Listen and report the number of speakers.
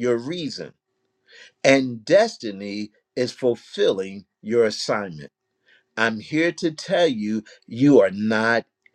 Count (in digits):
1